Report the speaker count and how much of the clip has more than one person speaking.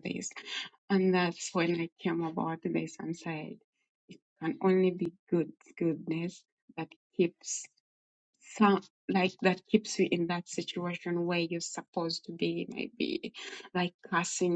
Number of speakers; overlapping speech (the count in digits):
1, no overlap